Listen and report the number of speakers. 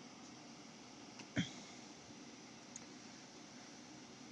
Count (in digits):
0